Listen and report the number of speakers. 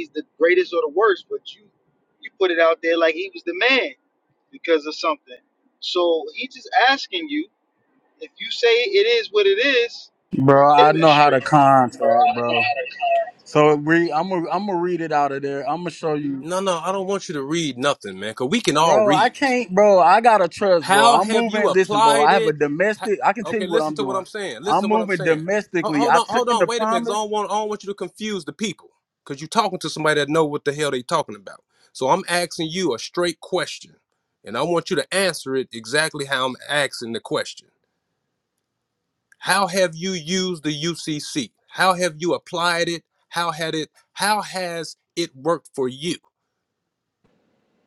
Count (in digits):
3